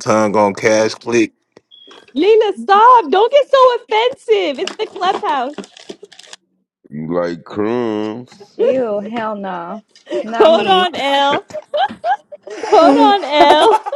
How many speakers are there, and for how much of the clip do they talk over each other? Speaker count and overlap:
4, about 7%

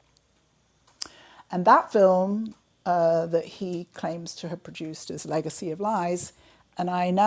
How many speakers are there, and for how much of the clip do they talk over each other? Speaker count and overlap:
1, no overlap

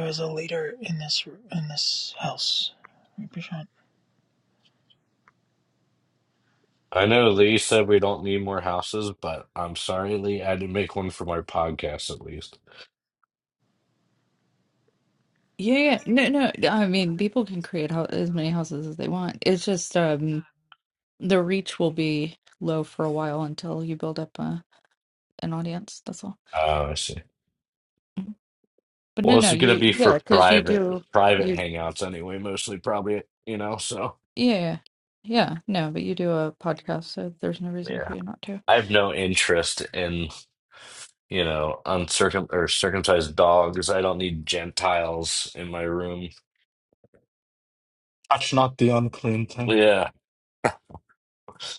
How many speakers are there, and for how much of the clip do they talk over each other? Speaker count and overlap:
4, about 4%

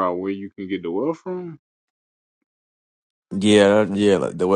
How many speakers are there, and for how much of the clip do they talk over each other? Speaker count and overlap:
2, no overlap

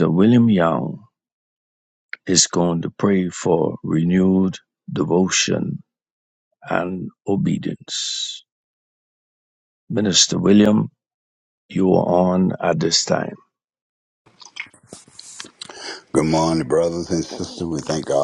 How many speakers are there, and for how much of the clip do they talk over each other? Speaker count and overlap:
2, no overlap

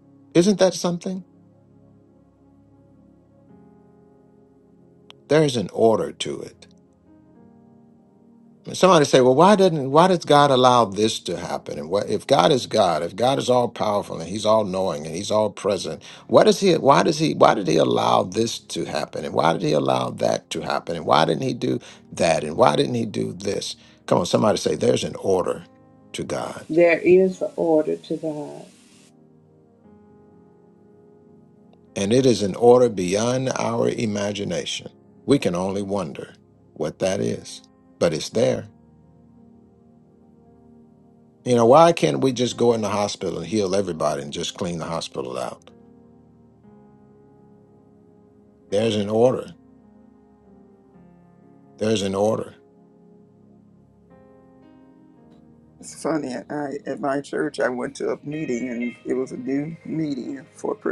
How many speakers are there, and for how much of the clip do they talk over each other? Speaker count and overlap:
3, no overlap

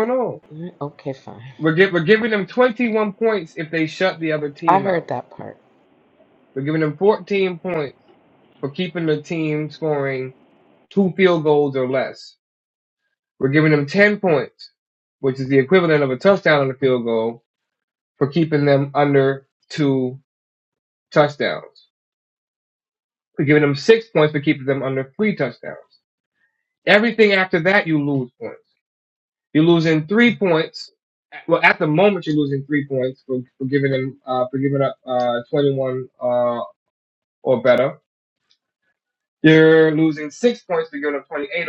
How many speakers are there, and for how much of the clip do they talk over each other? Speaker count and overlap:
2, about 1%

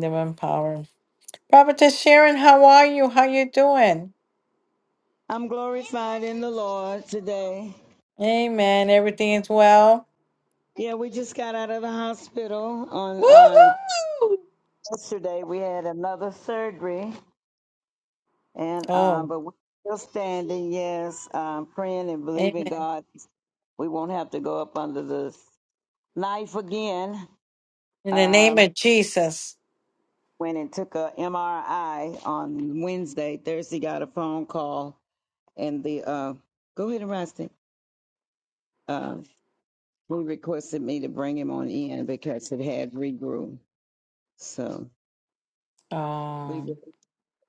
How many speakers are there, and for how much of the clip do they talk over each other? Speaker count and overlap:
2, about 4%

